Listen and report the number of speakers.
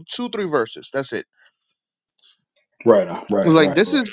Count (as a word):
two